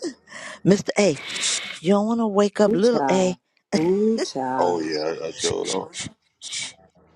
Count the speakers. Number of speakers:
three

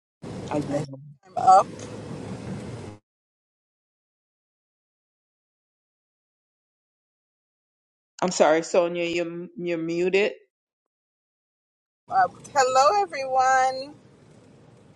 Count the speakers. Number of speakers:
two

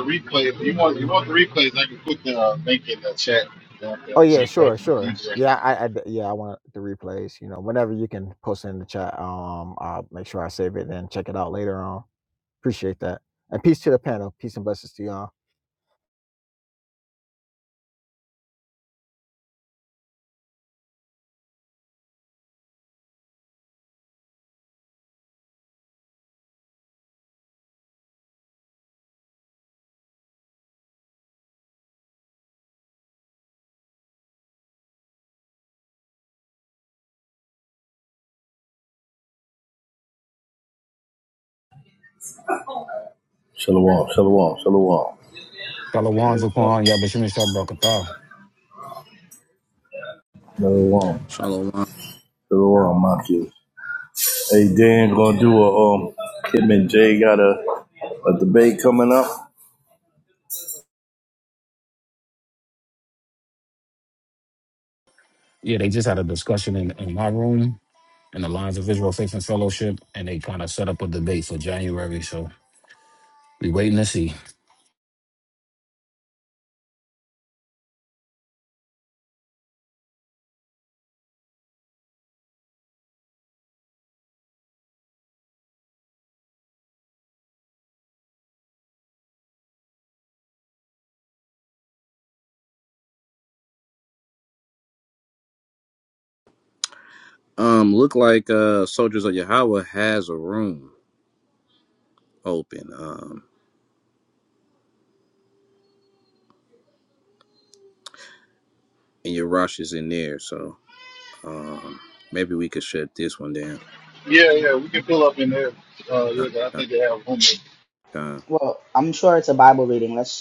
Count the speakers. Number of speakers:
six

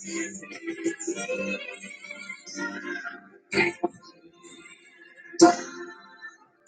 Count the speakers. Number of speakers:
zero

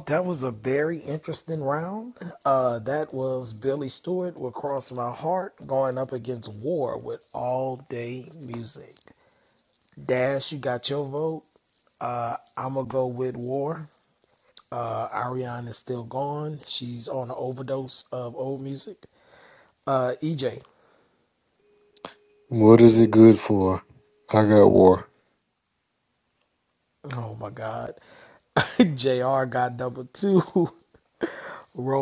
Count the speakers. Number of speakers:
two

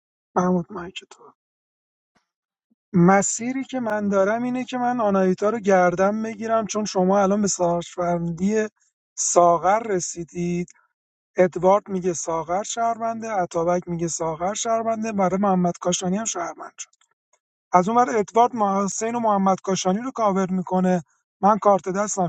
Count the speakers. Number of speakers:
one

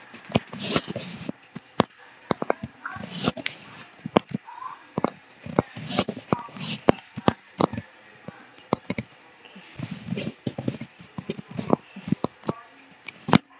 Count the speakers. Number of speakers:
zero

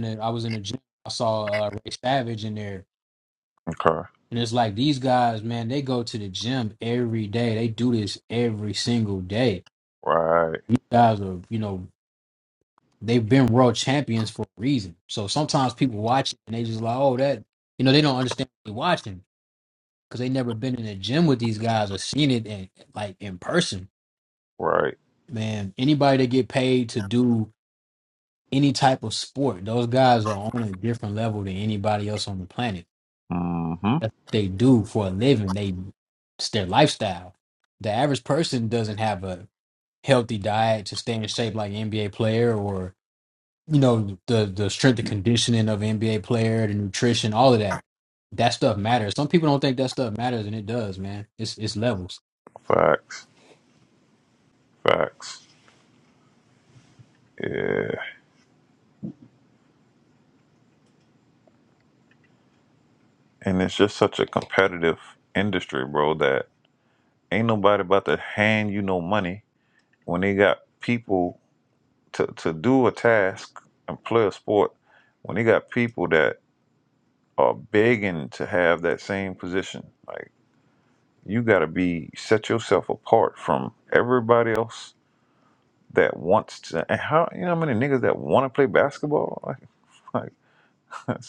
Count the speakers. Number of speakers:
two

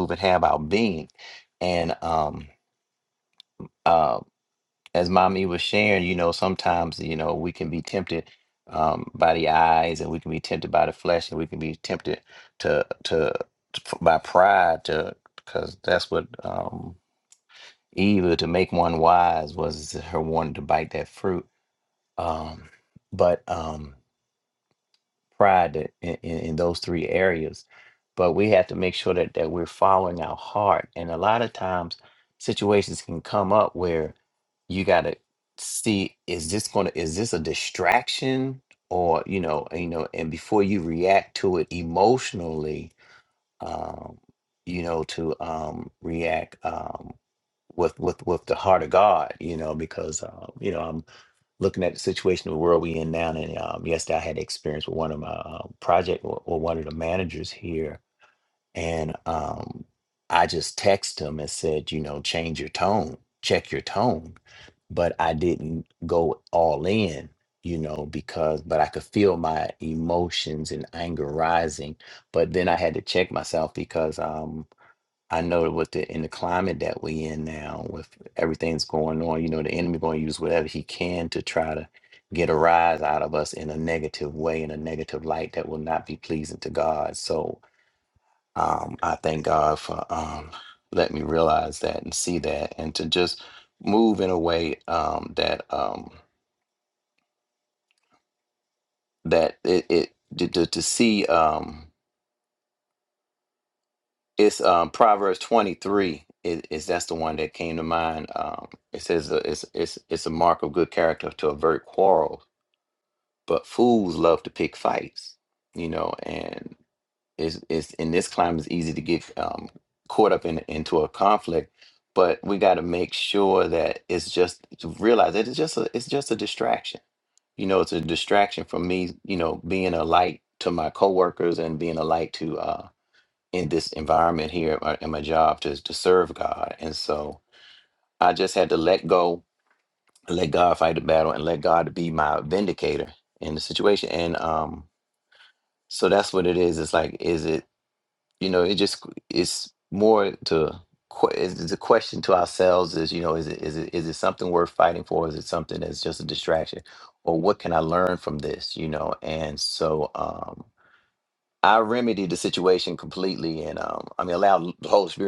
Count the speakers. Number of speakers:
one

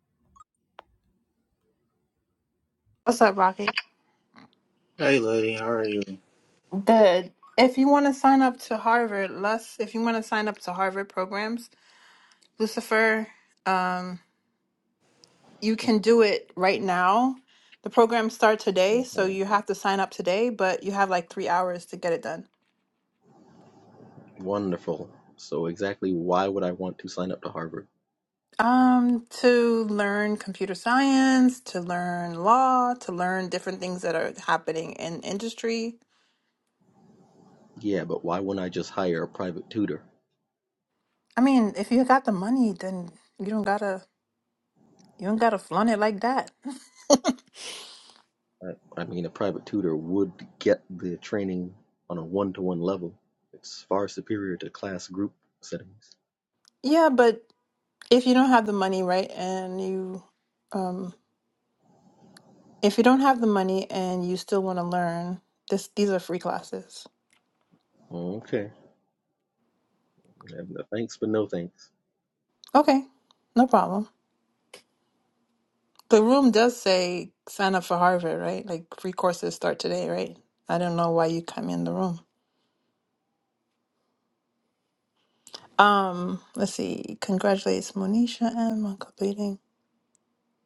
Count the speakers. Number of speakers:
three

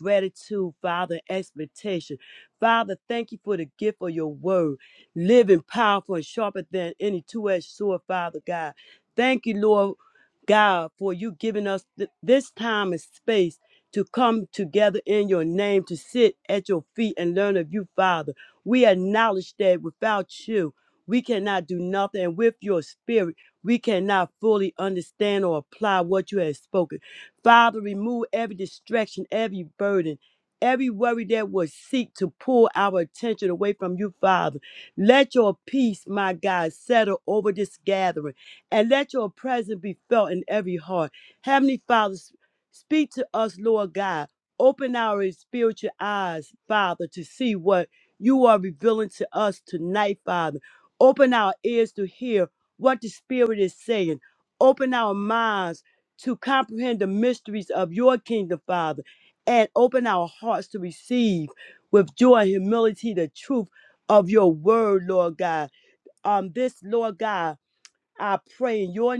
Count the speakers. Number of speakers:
one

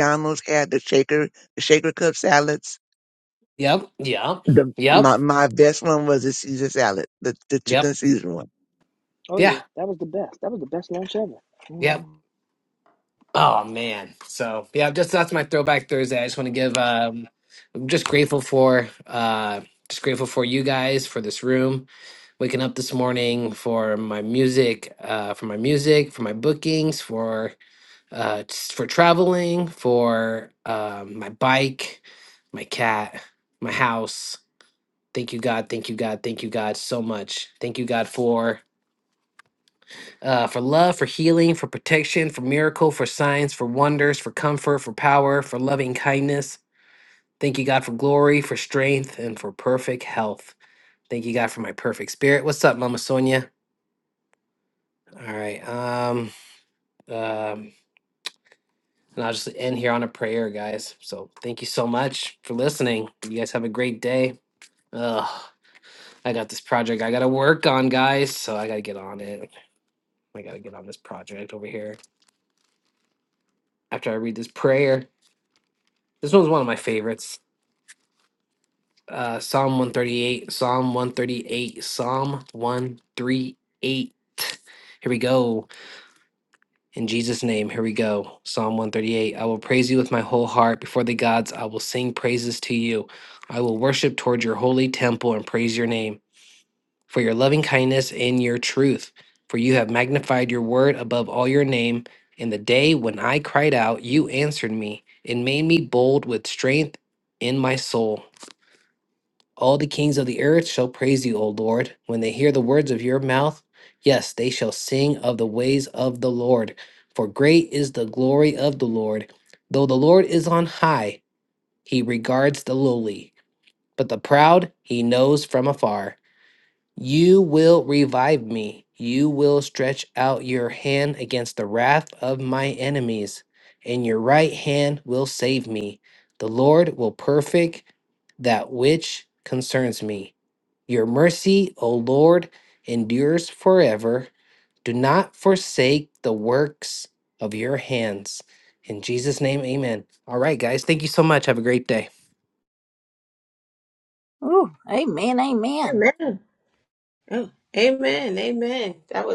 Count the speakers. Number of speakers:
five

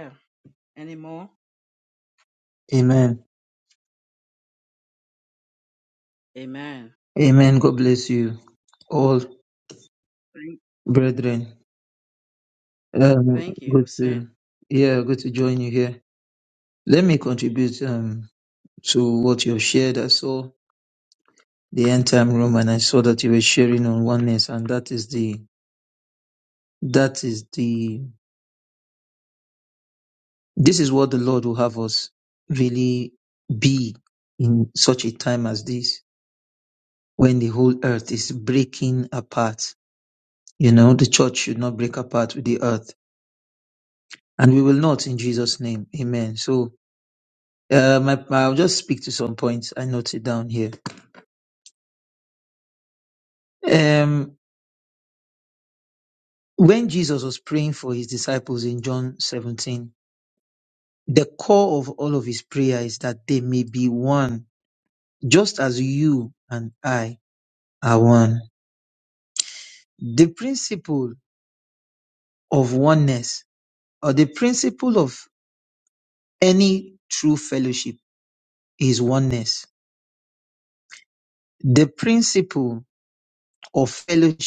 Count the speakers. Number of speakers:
two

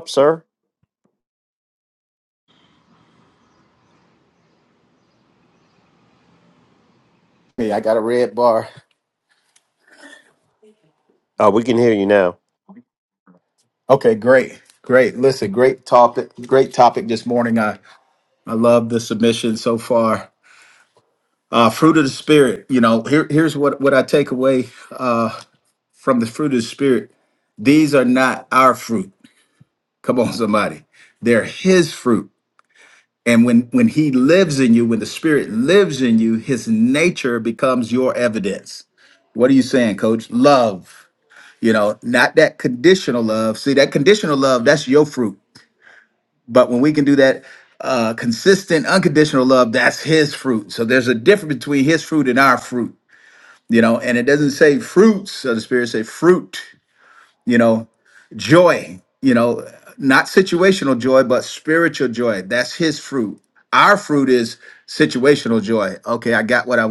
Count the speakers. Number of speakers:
two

